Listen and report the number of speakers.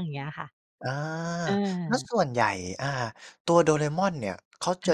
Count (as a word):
two